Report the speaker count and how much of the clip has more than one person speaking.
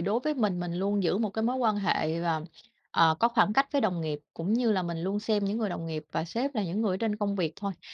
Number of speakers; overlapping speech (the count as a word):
one, no overlap